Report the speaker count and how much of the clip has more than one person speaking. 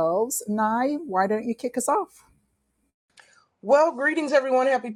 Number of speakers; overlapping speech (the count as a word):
two, no overlap